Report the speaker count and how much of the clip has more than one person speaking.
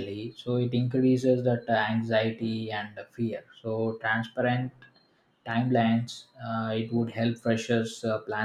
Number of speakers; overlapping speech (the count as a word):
one, no overlap